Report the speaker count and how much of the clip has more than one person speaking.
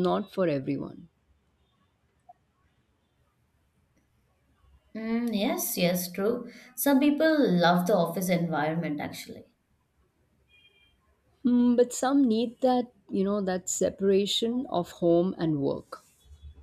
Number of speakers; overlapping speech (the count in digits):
2, no overlap